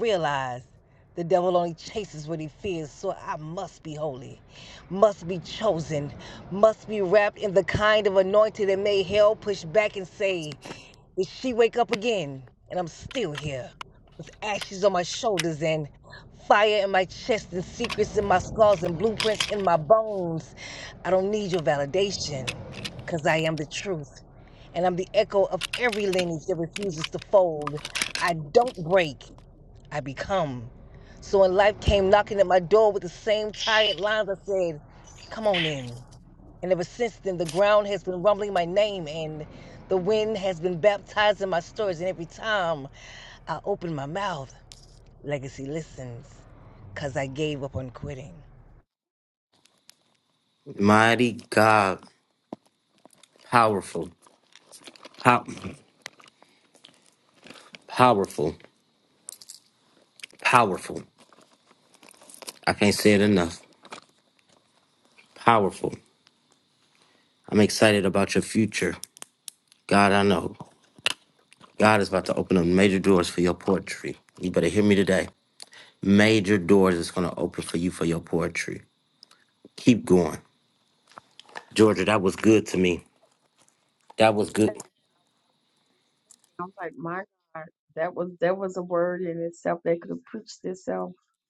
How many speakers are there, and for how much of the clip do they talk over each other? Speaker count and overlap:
three, no overlap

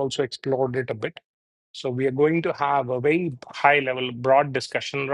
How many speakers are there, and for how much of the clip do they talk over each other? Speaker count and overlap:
one, no overlap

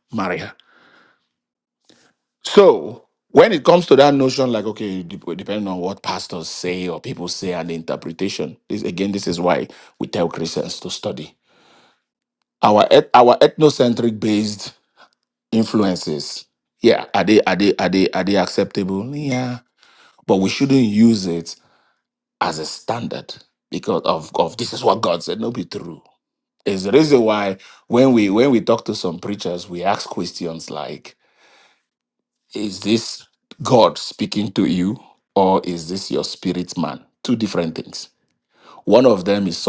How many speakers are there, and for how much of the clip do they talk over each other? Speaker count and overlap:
one, no overlap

